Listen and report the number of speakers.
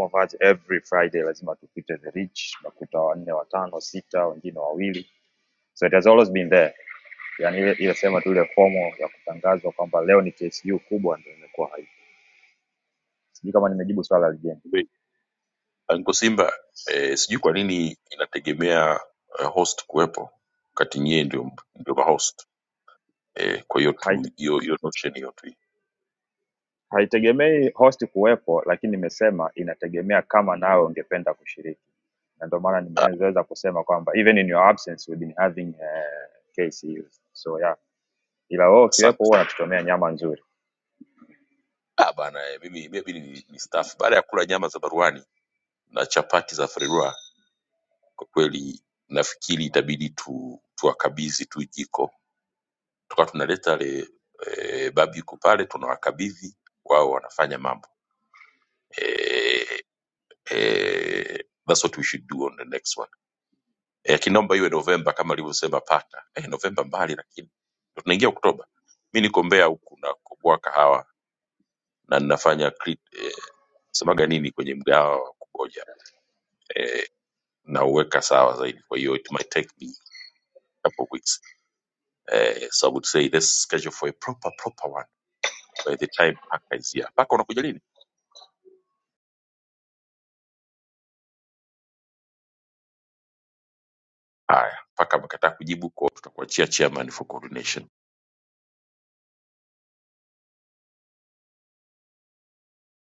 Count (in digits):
2